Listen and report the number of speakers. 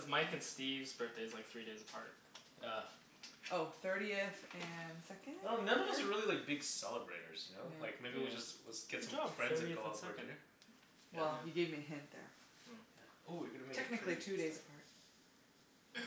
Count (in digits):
3